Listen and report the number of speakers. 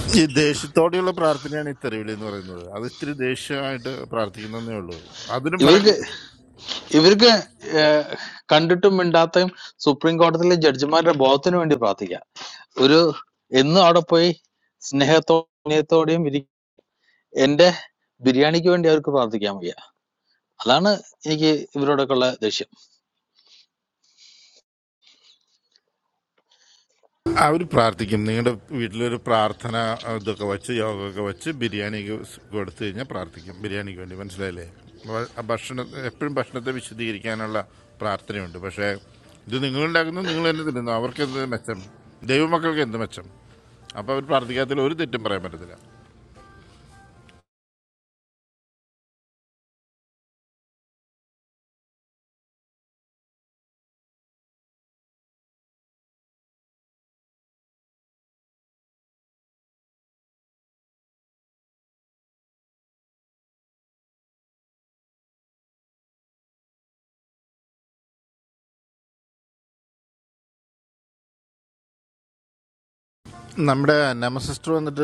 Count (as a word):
two